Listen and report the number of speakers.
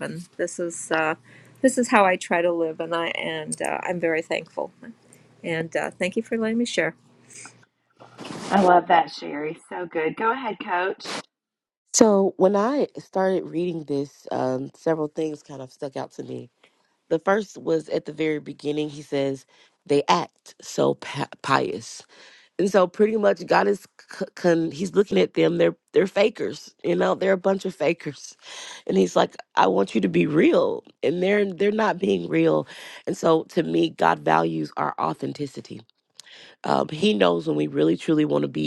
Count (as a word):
three